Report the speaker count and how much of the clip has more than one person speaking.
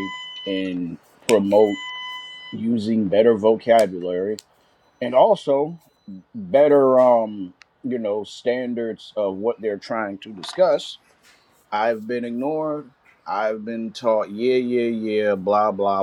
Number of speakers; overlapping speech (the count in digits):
1, no overlap